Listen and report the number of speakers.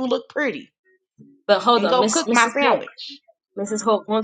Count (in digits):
2